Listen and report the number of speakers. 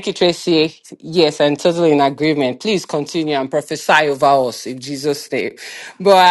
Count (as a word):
one